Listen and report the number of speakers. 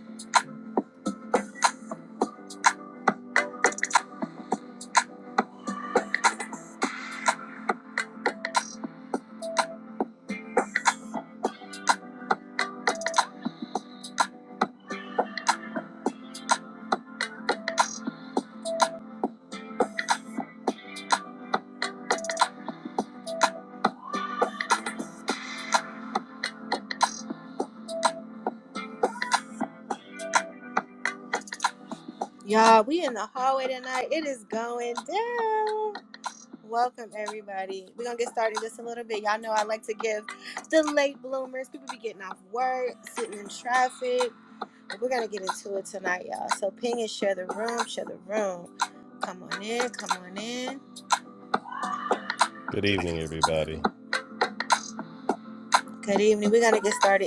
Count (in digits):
2